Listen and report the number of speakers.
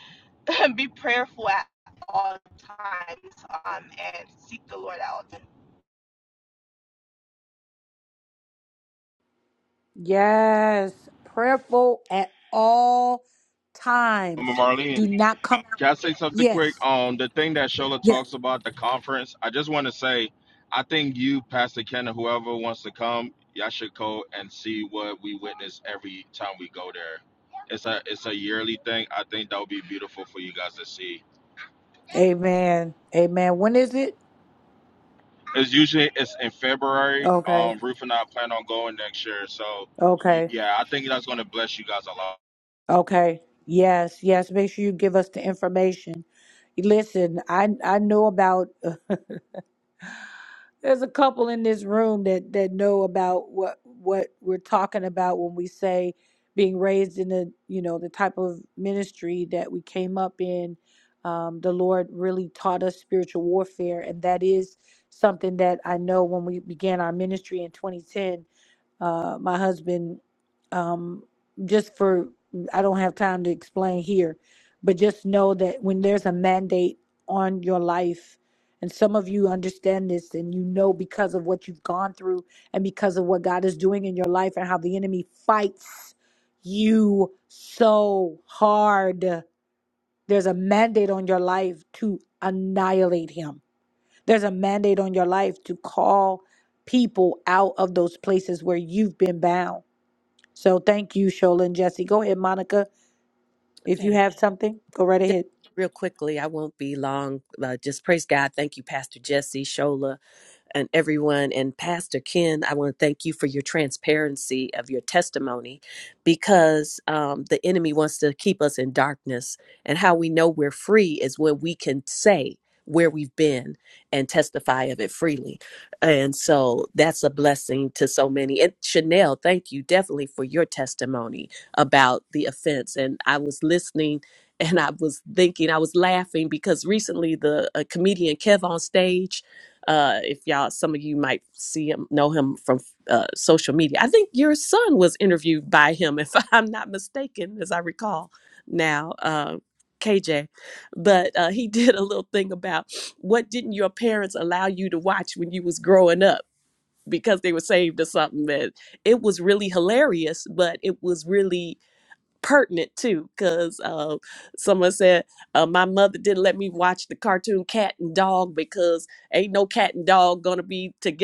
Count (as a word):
four